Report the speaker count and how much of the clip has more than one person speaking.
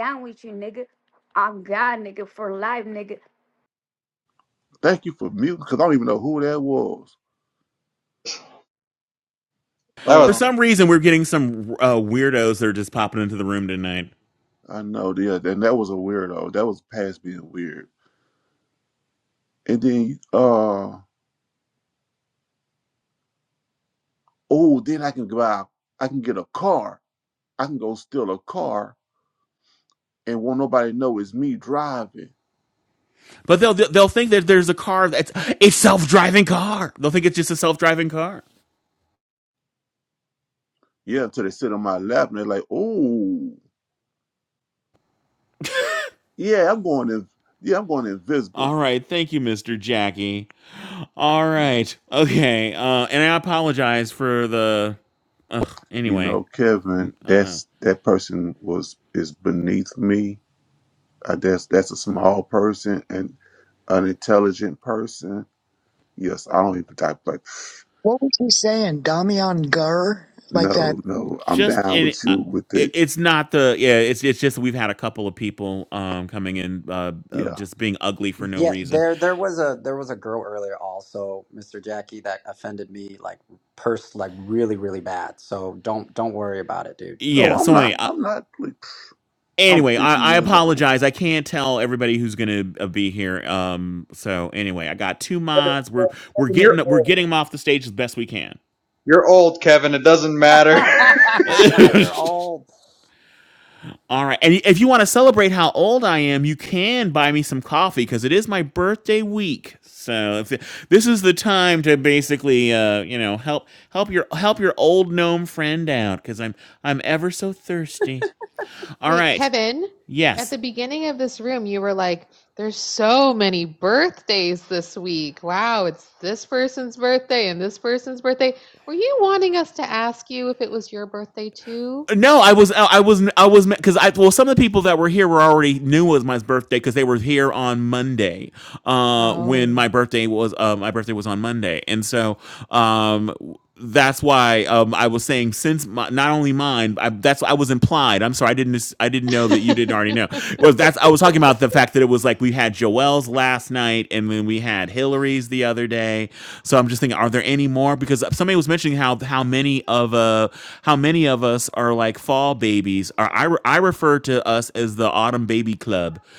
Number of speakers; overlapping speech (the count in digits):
7, about 5%